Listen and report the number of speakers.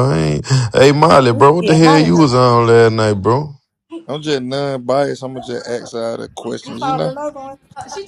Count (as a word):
three